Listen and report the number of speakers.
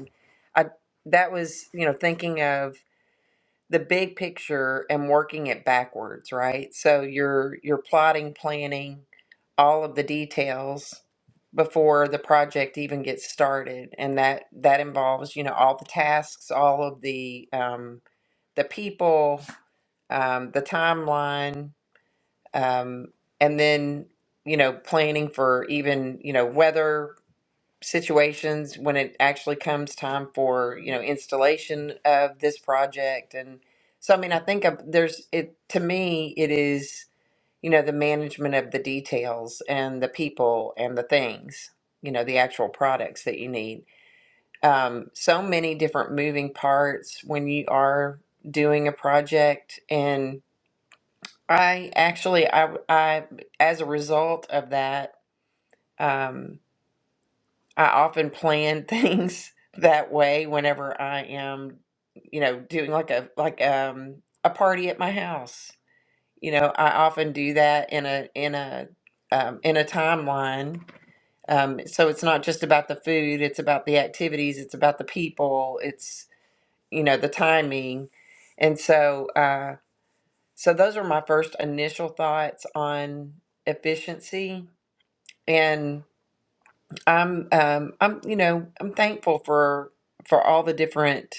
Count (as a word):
one